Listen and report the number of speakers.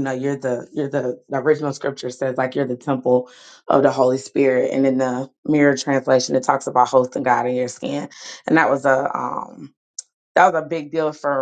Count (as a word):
one